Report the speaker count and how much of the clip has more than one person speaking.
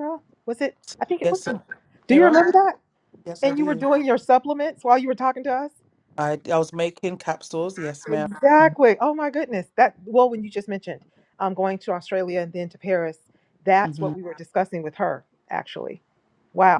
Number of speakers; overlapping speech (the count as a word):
two, about 10%